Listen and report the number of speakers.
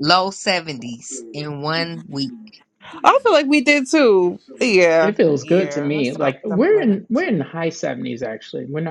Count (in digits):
3